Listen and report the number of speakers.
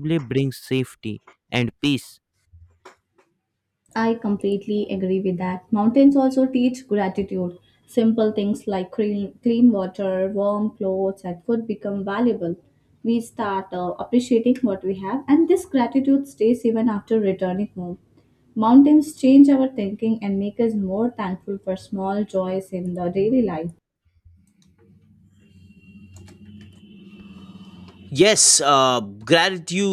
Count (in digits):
3